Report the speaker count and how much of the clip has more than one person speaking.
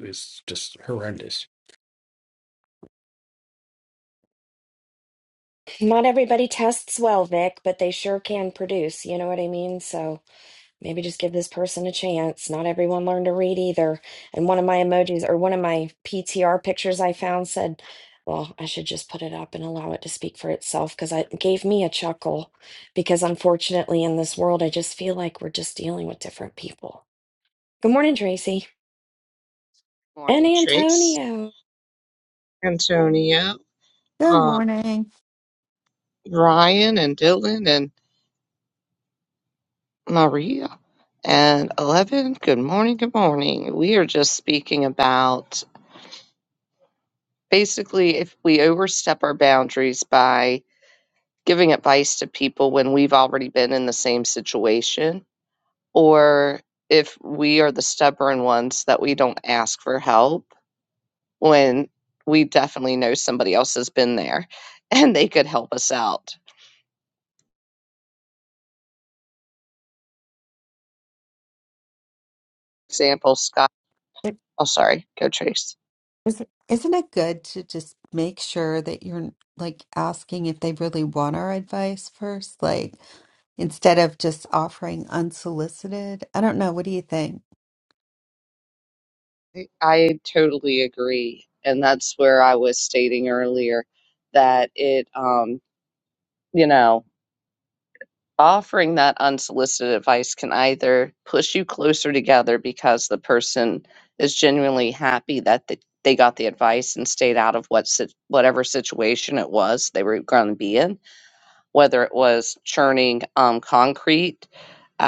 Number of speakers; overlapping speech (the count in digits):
4, about 1%